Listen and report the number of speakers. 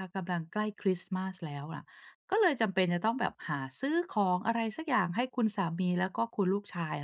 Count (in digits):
1